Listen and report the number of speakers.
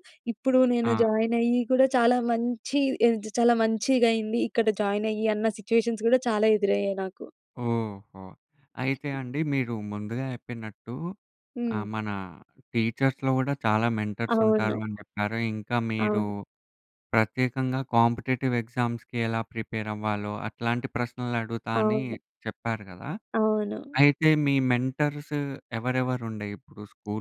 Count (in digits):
2